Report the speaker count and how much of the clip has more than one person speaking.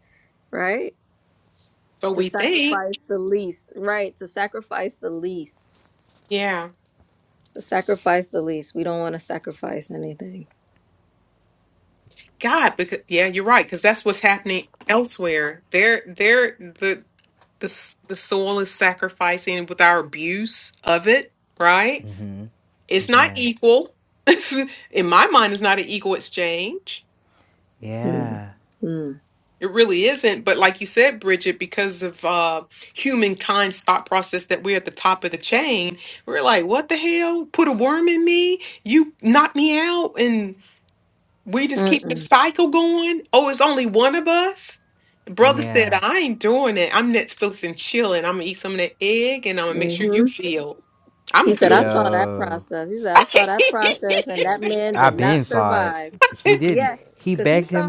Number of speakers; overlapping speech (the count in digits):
3, about 10%